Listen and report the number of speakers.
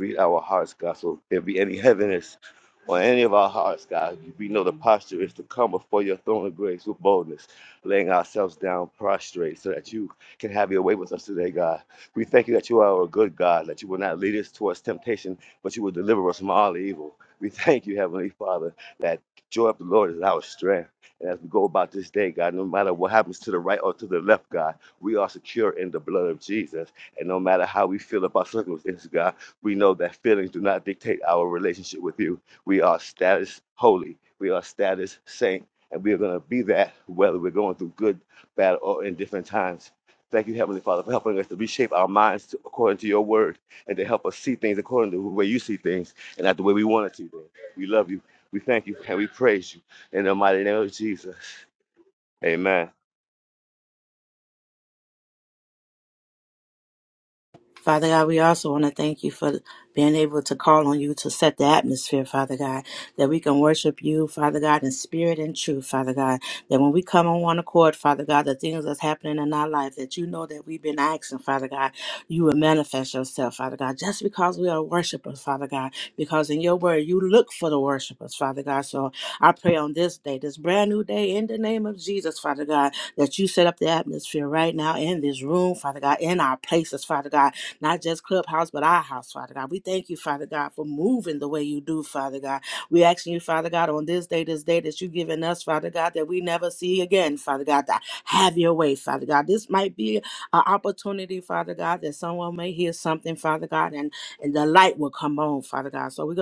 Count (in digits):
2